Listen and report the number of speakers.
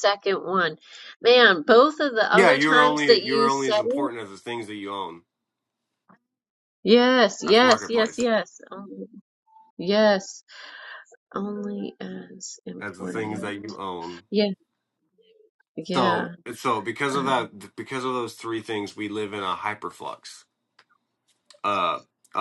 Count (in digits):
2